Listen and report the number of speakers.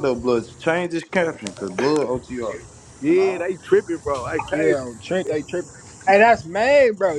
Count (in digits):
3